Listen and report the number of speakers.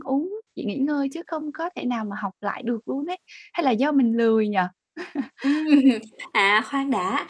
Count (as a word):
two